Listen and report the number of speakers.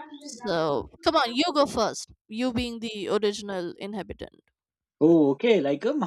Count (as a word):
two